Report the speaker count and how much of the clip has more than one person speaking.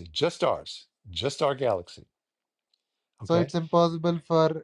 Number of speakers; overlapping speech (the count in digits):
2, about 4%